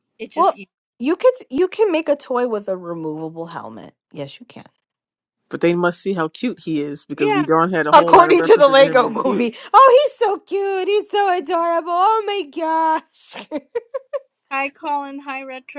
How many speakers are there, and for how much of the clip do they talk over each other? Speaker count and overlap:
3, about 13%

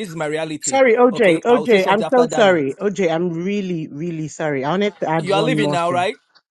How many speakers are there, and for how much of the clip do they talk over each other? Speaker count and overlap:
2, about 37%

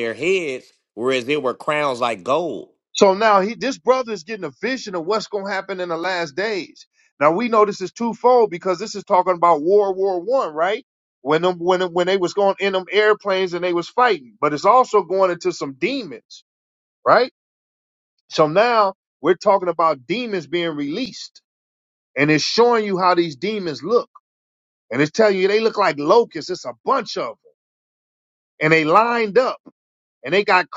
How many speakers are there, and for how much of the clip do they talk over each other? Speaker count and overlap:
2, no overlap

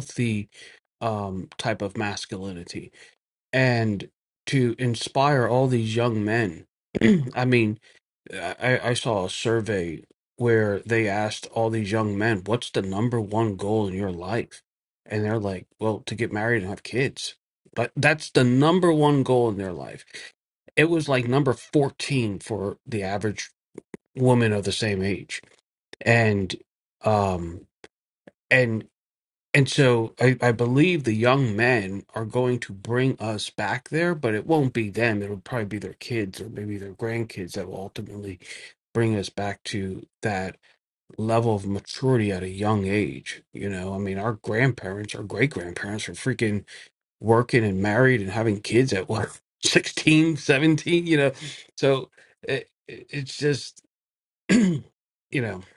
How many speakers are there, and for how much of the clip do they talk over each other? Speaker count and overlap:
1, no overlap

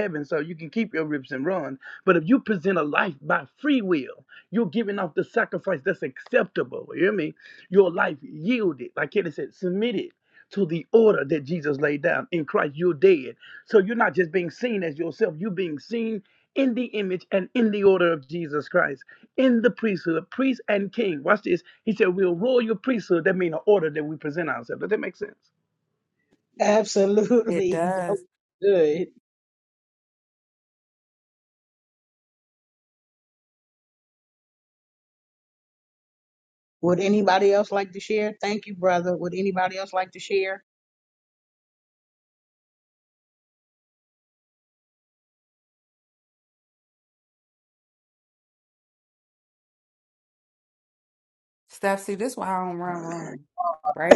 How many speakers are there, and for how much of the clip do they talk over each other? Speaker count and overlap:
3, under 1%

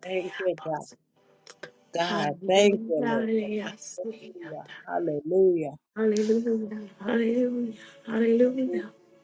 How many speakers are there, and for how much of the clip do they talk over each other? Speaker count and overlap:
2, about 27%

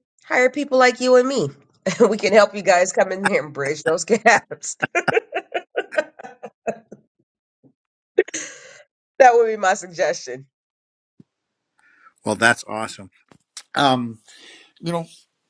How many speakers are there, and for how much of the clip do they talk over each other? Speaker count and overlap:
2, no overlap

